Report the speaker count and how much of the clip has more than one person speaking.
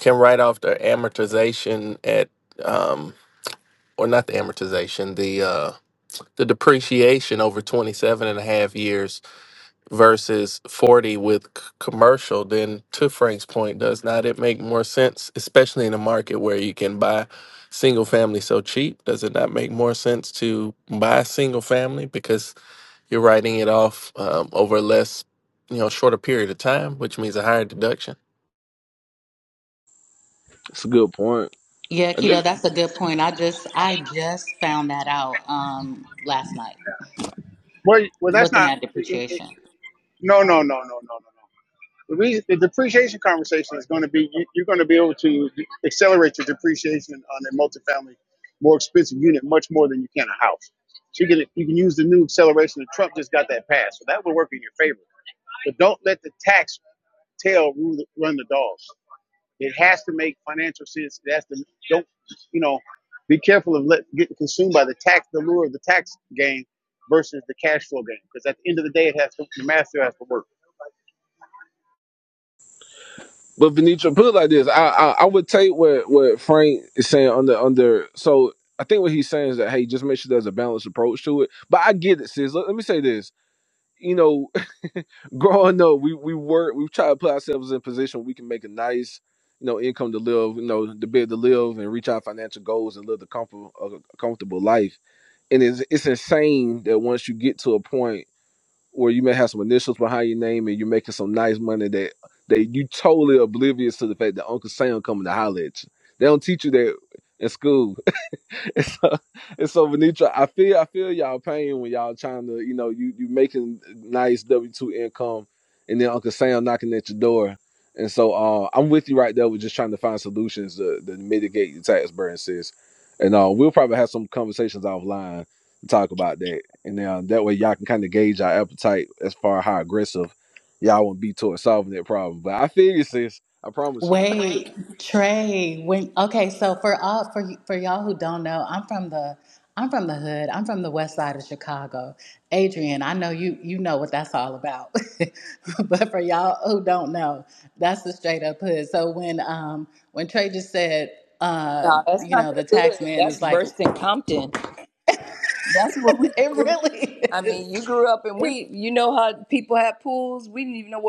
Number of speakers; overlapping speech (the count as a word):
five, about 3%